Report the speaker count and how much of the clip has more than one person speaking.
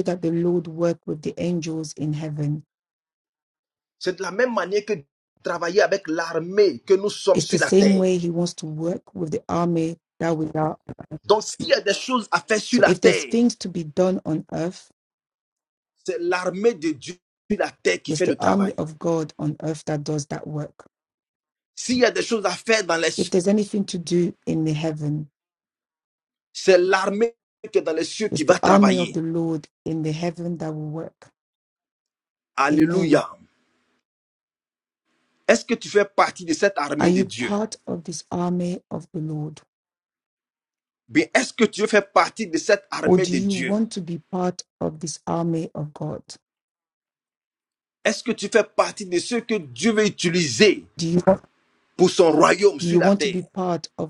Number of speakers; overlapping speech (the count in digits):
2, about 10%